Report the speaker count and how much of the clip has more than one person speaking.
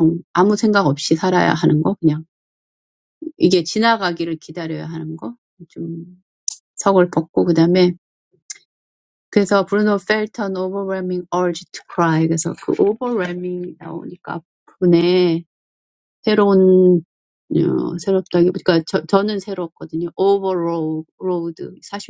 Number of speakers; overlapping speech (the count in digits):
1, no overlap